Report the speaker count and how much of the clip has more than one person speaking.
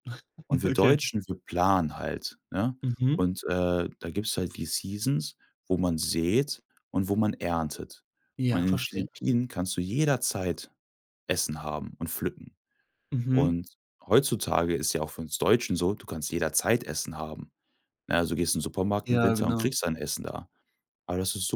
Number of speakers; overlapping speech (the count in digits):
2, about 8%